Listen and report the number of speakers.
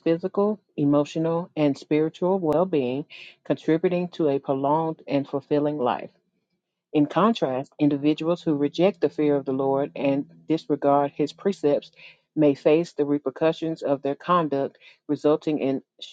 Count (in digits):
1